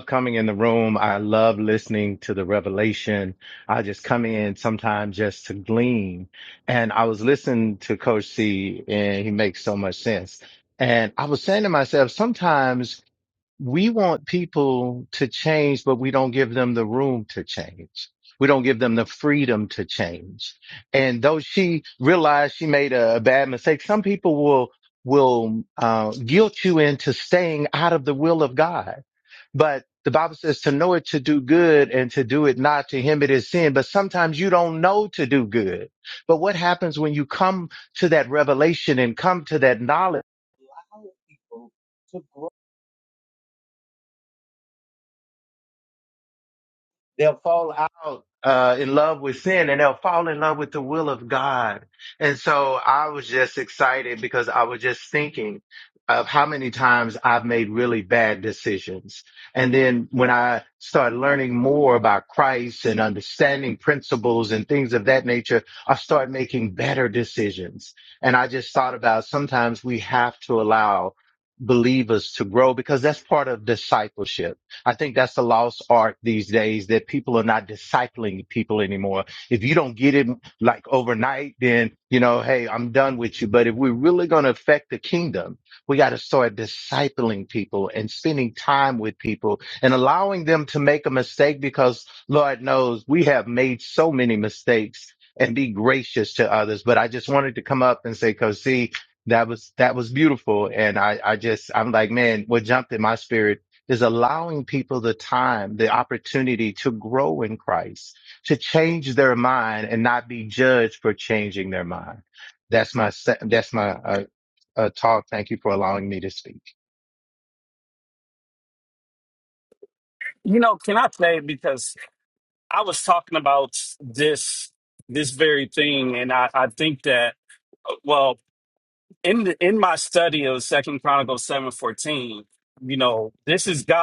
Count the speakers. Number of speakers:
two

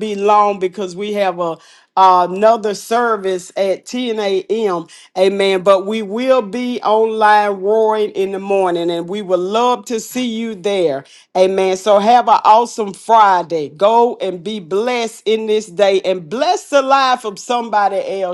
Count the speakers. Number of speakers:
one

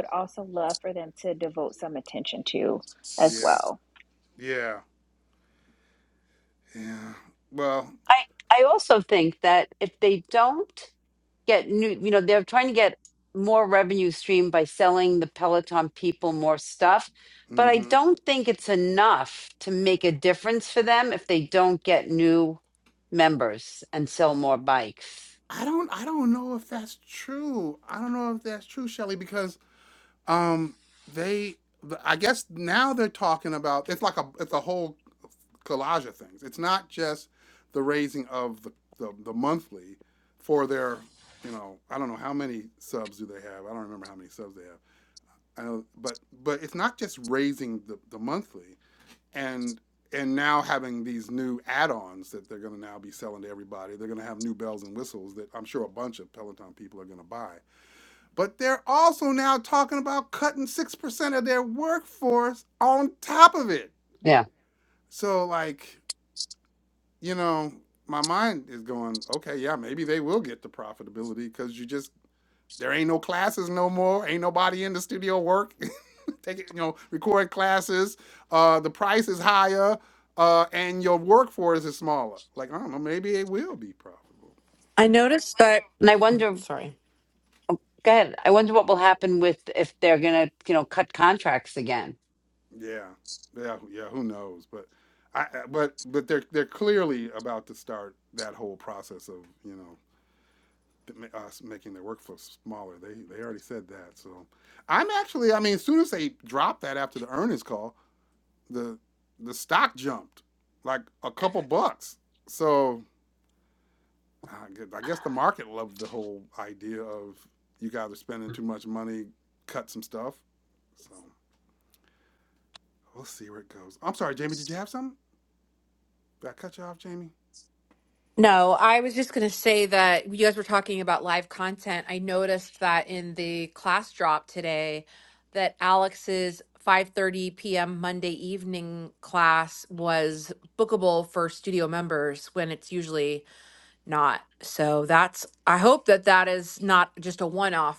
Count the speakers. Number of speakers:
four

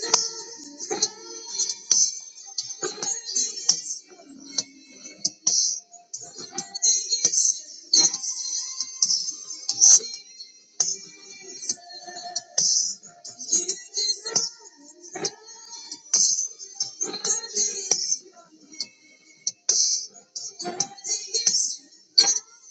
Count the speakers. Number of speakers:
zero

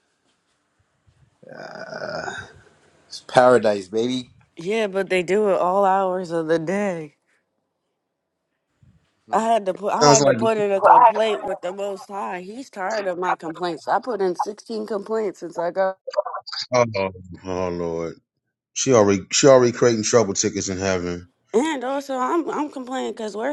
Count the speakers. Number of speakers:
three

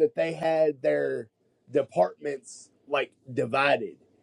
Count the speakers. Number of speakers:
one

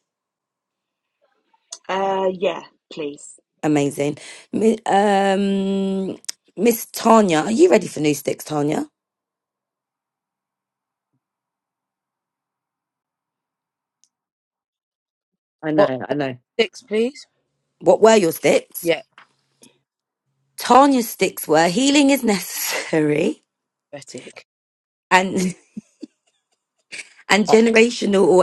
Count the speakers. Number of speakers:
three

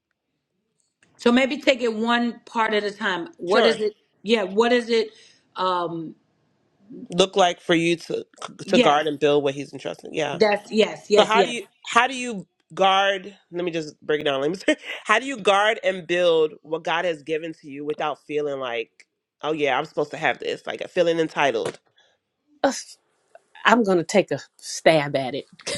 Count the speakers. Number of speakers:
three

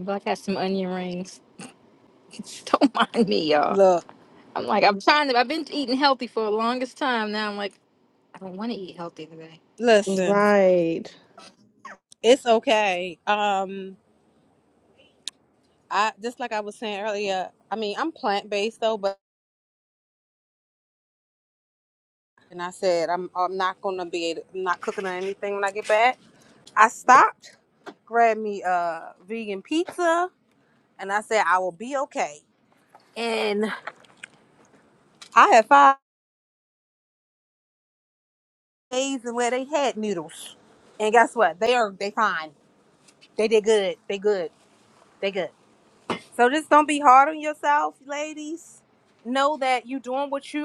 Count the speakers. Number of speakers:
three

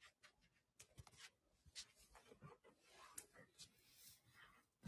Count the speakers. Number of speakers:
zero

